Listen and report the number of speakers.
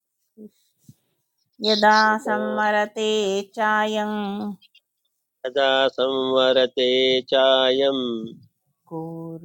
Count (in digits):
2